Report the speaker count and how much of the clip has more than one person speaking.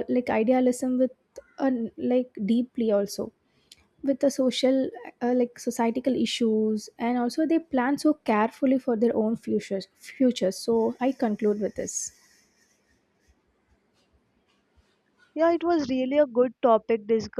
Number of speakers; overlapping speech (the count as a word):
two, no overlap